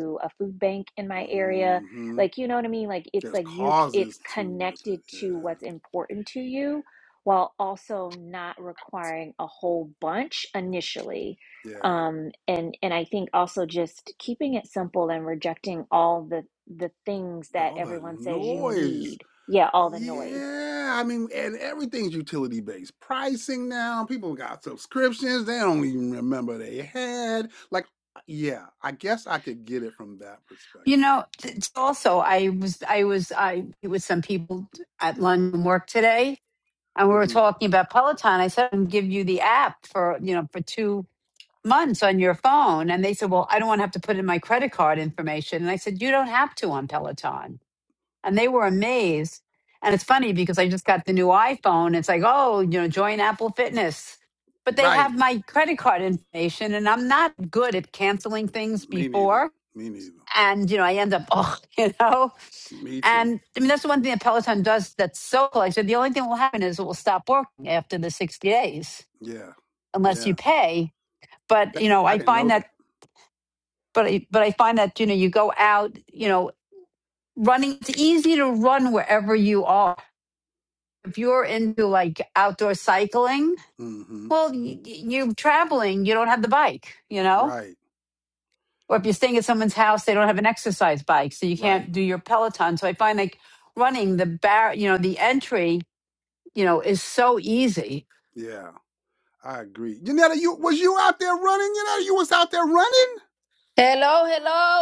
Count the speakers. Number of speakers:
4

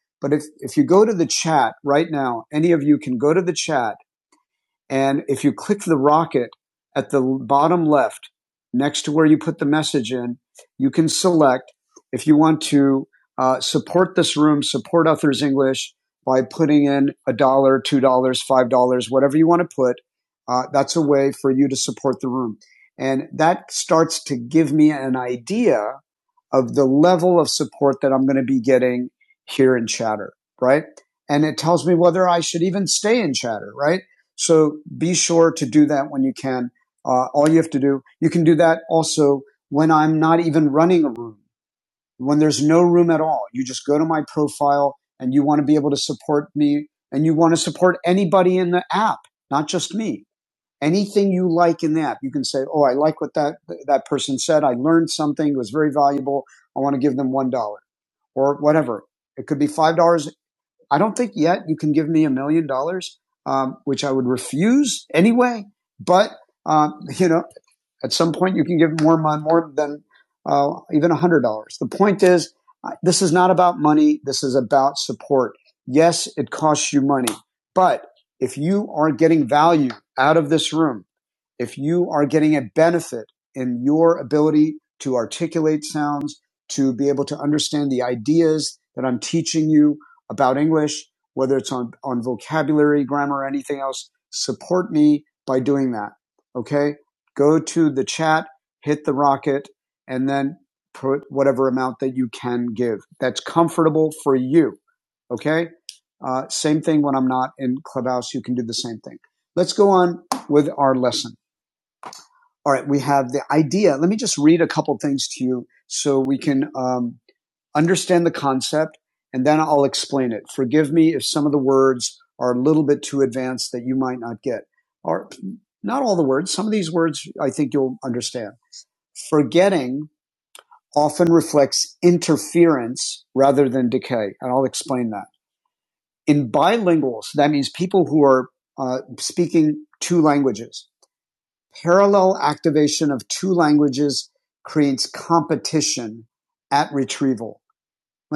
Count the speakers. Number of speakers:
1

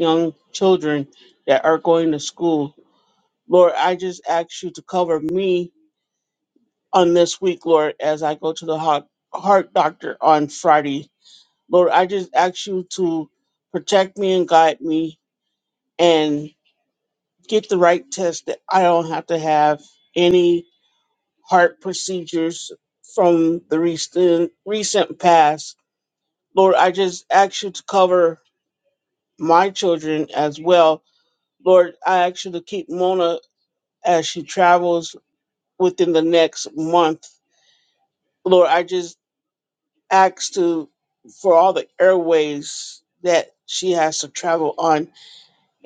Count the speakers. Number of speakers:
1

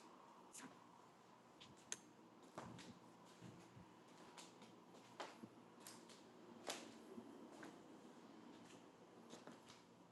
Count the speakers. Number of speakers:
0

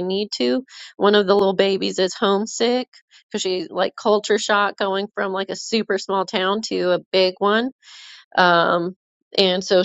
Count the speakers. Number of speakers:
1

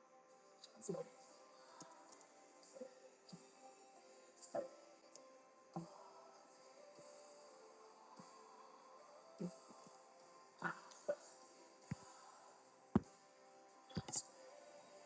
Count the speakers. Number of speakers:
0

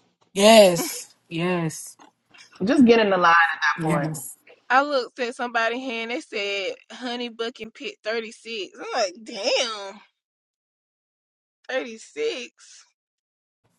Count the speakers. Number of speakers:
3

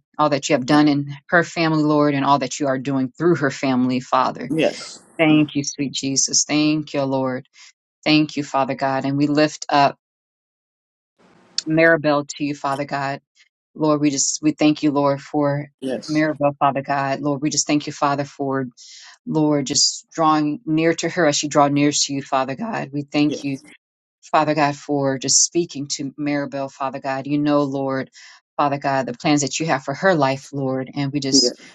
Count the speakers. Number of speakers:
2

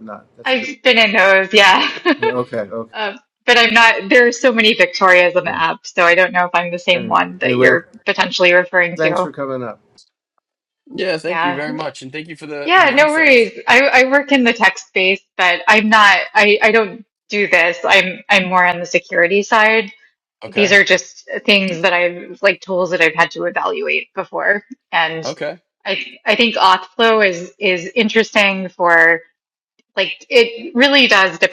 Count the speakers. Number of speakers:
3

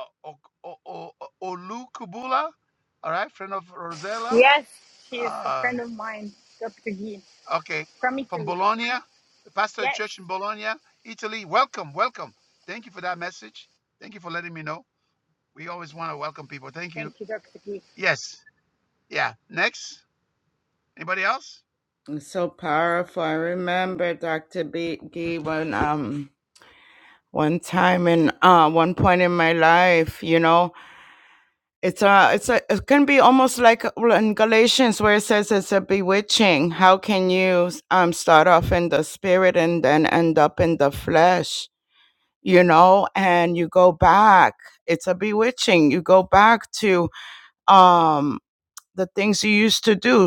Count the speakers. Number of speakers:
3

